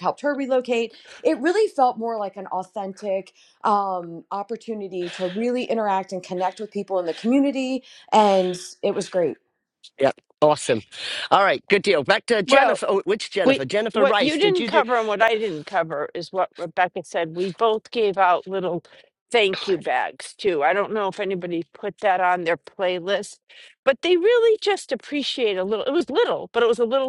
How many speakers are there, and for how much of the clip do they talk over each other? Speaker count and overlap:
3, about 5%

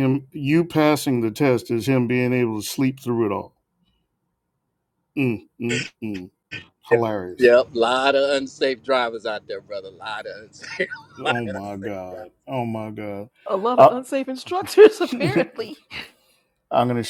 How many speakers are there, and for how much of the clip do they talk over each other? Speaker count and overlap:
3, about 8%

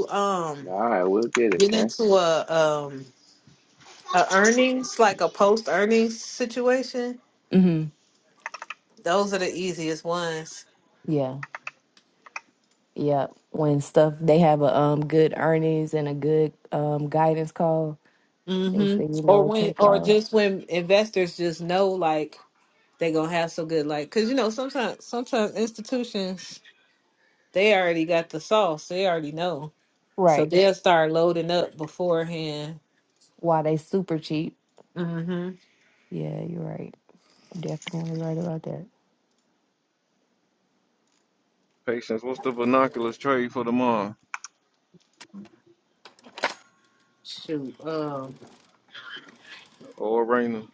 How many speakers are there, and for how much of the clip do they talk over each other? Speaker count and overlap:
4, about 4%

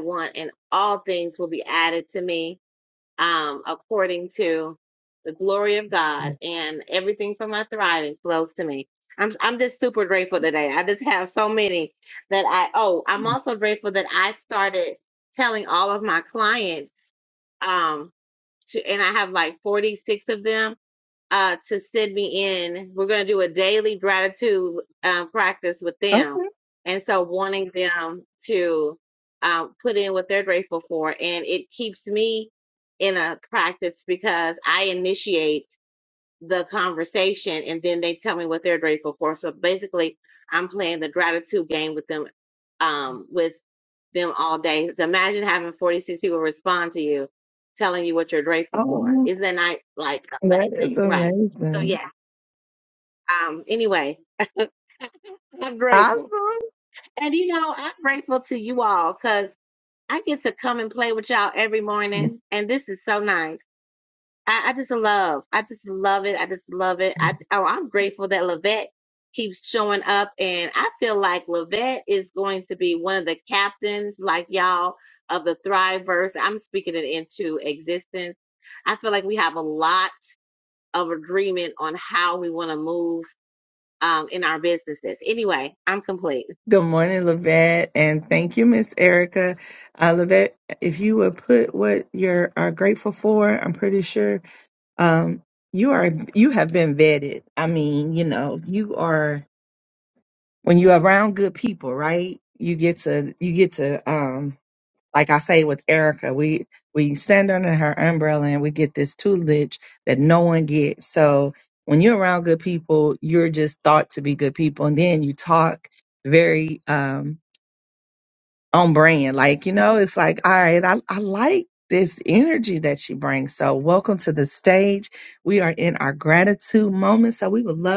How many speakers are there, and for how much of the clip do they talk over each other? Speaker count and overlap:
2, about 2%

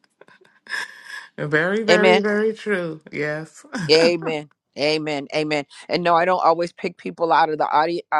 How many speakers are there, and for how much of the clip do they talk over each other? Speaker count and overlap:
2, about 4%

